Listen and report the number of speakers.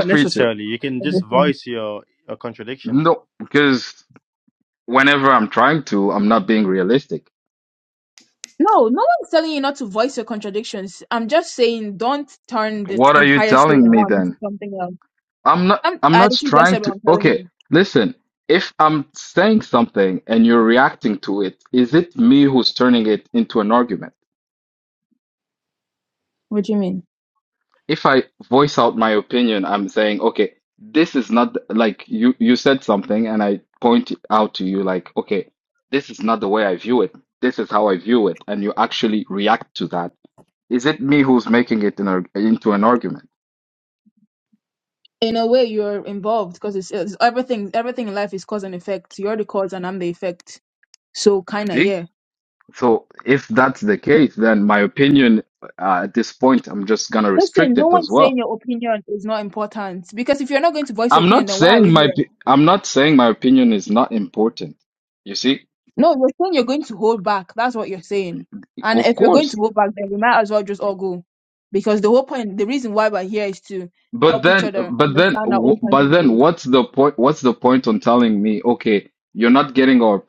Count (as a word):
three